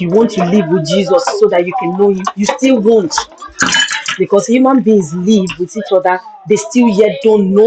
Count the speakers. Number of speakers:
one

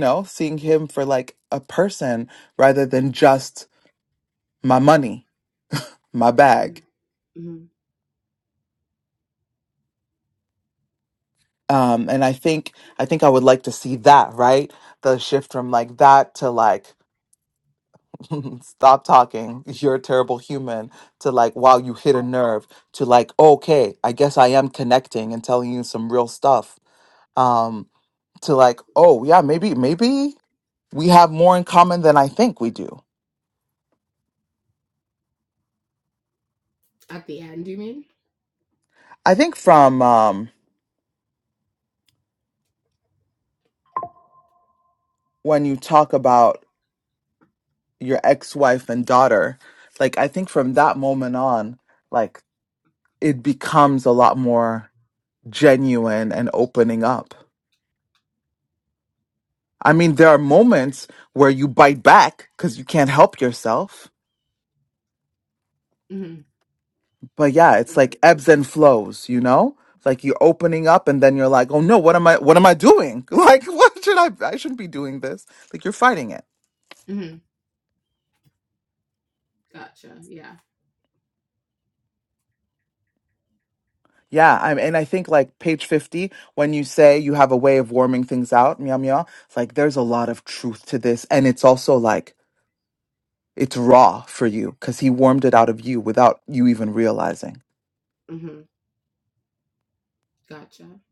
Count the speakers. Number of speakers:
two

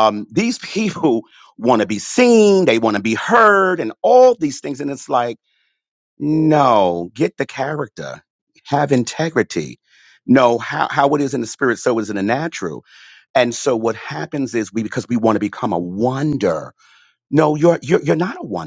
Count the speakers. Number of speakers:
one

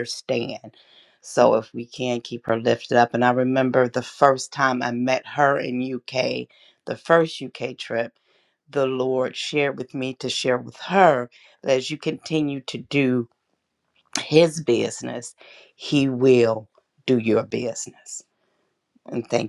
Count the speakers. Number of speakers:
one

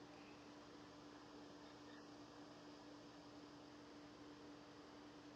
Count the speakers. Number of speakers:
zero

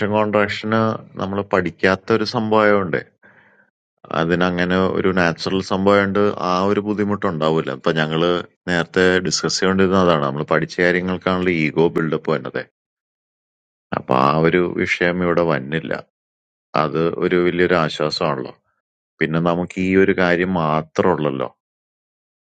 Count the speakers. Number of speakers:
one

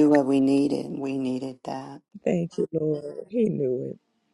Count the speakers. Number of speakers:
two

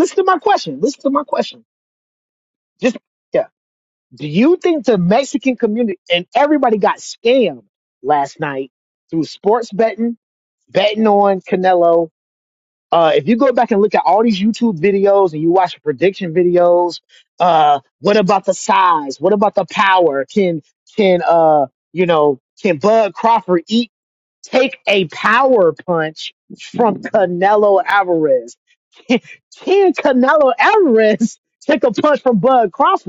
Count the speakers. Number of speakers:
one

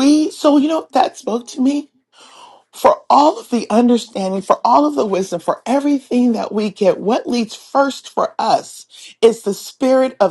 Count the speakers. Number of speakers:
one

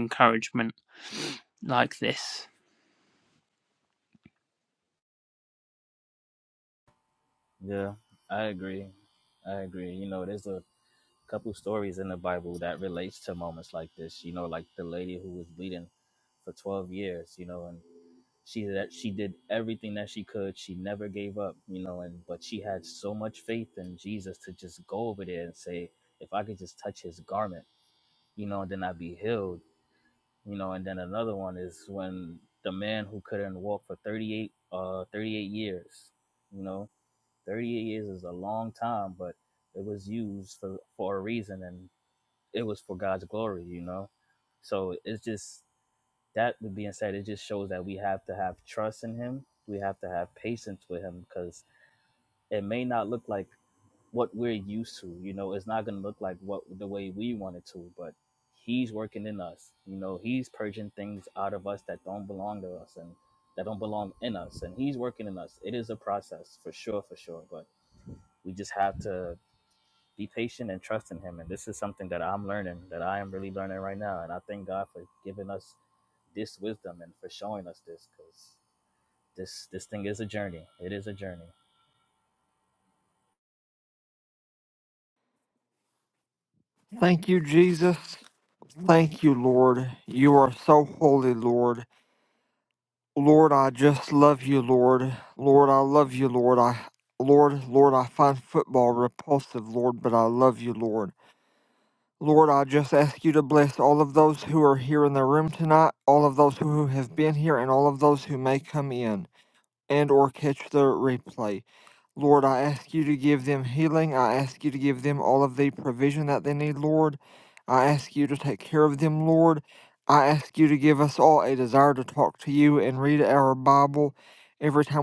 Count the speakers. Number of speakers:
three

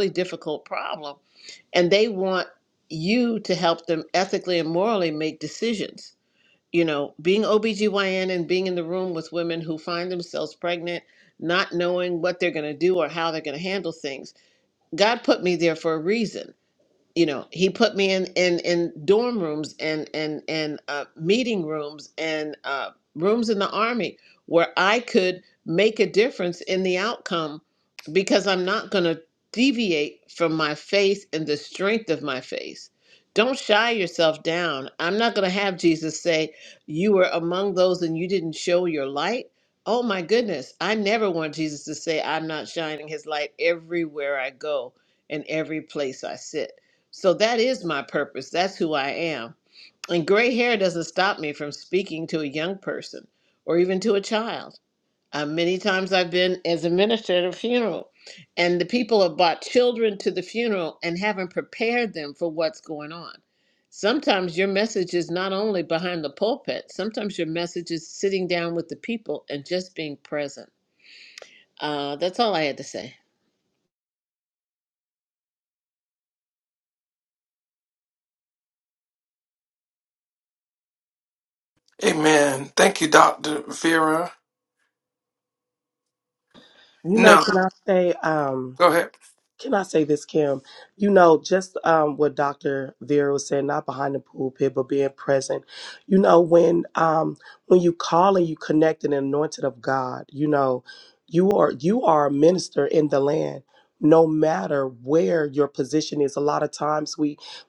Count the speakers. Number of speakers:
three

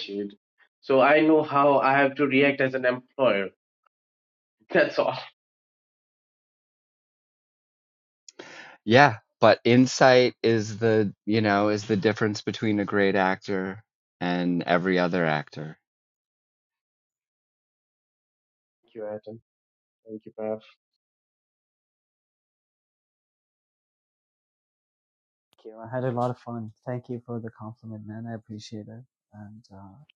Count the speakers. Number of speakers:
three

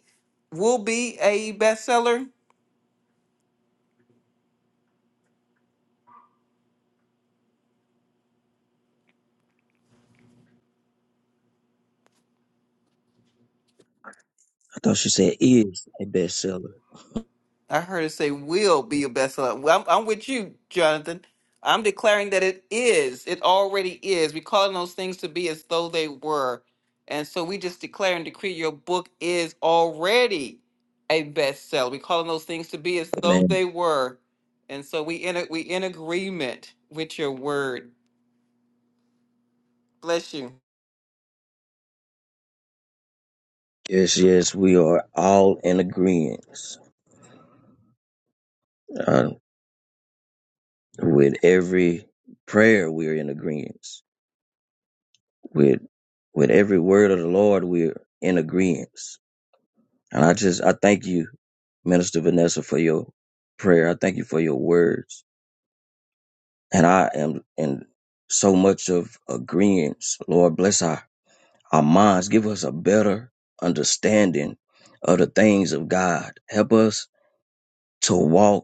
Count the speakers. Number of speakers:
two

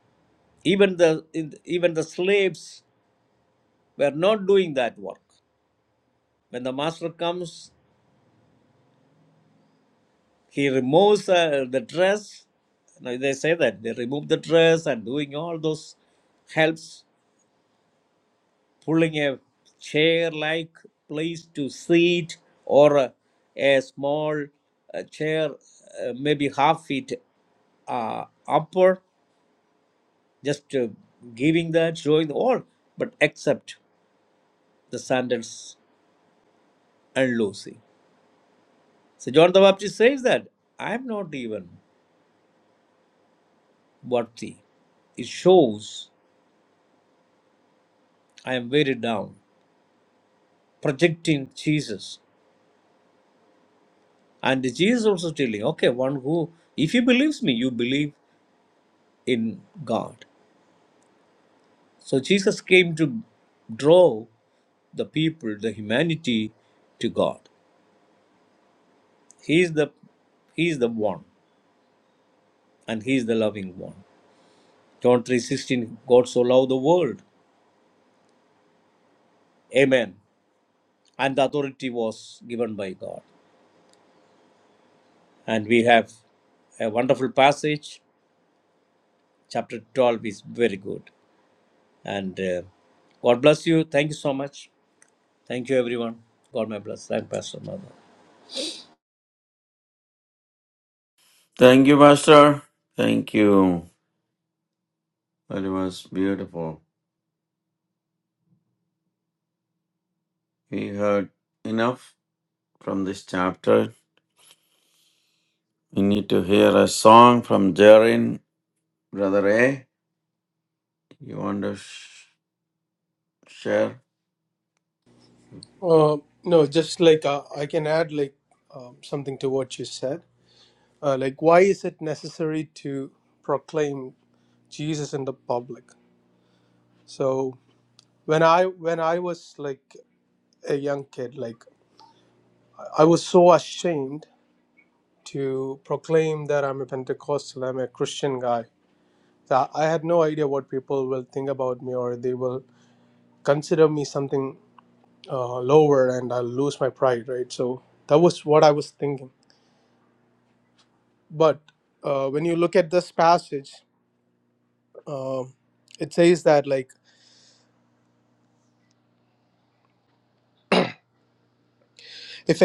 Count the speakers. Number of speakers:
three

